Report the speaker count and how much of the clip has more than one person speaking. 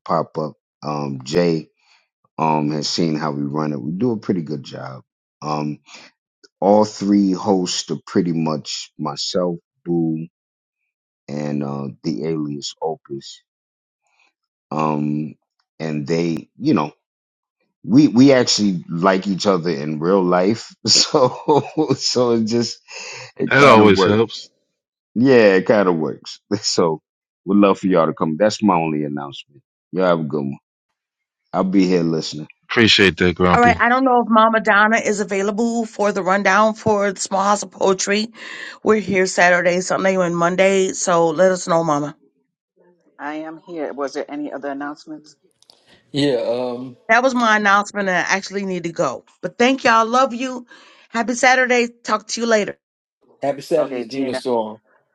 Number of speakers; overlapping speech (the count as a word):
five, about 3%